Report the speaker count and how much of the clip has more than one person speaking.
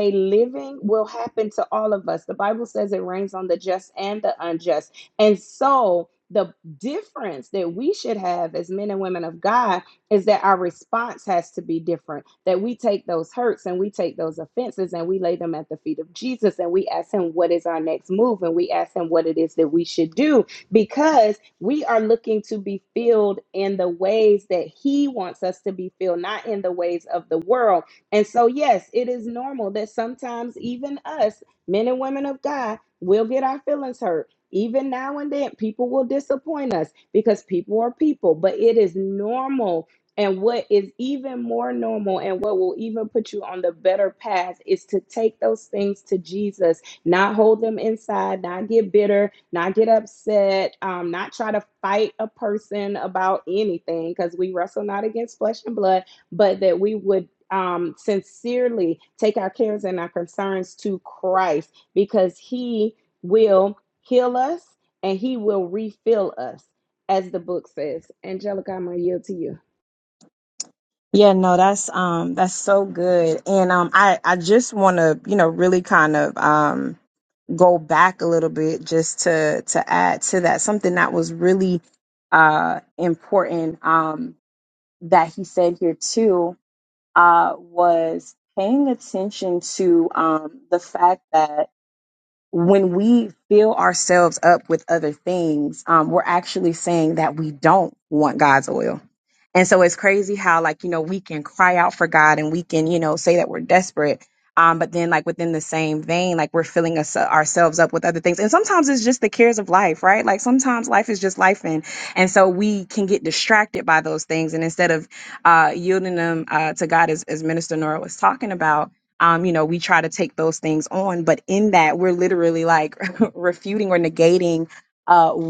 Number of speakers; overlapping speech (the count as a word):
two, no overlap